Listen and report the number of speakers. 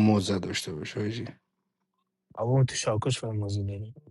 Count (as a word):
two